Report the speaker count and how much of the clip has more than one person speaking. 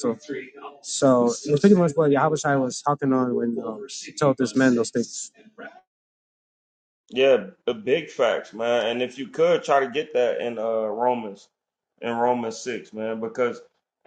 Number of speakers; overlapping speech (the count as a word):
two, no overlap